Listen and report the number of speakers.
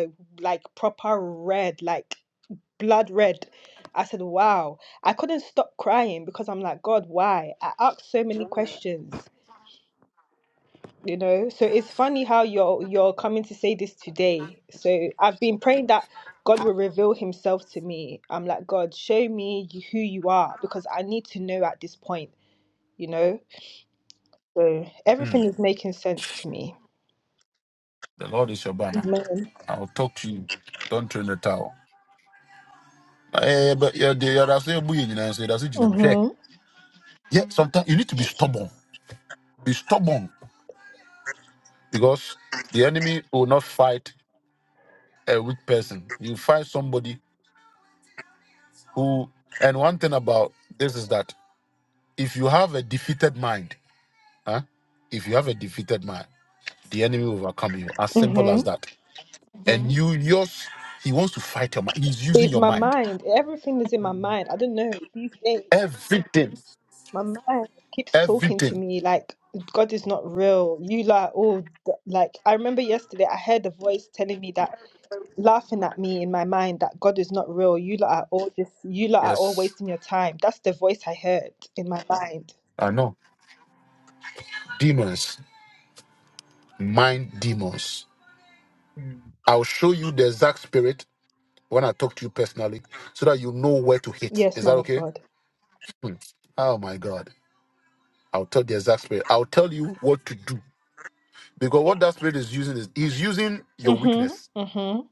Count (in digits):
2